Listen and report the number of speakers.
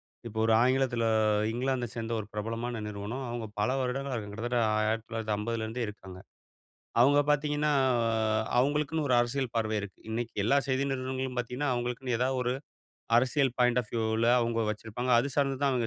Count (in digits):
1